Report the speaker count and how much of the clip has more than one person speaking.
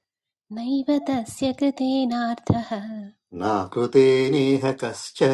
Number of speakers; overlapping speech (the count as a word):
two, no overlap